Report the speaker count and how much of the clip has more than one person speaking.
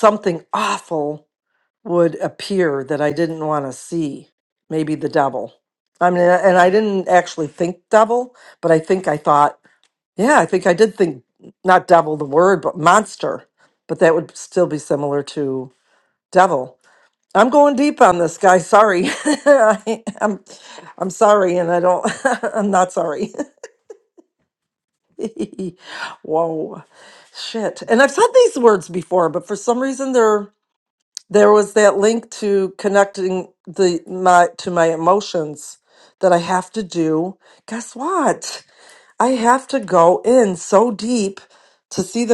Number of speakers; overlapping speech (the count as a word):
one, no overlap